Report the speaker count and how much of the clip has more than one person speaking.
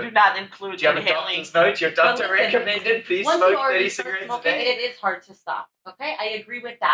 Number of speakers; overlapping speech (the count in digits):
3, about 44%